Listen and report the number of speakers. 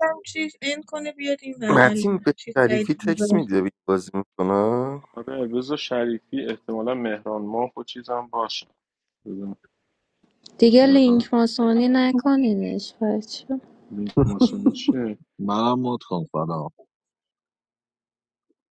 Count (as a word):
five